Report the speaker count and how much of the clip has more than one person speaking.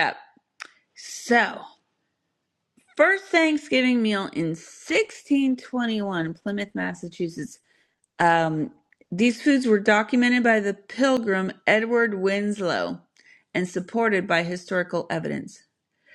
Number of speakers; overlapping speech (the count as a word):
one, no overlap